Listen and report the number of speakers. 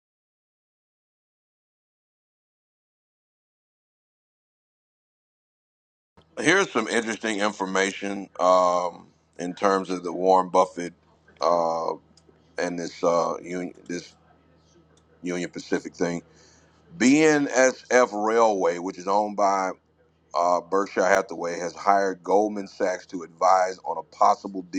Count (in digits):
1